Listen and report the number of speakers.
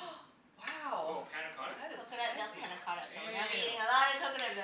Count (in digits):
3